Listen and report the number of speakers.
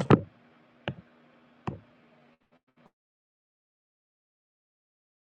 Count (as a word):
zero